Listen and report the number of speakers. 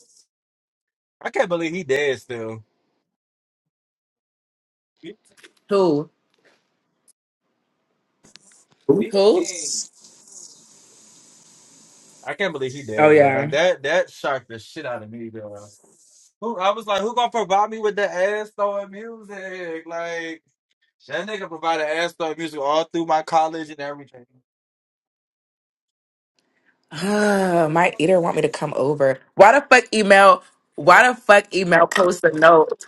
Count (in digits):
2